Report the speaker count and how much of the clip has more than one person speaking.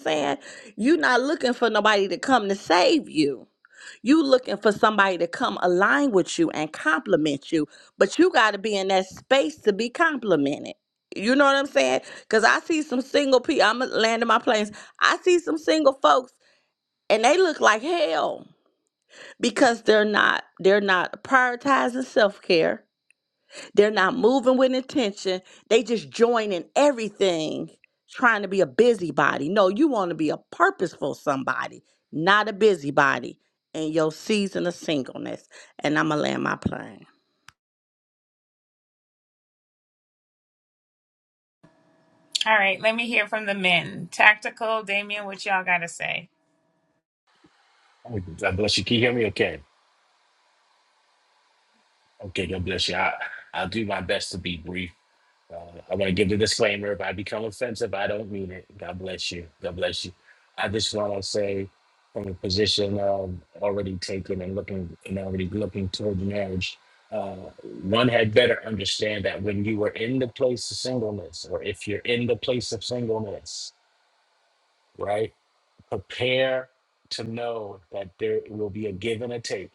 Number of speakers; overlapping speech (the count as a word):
three, no overlap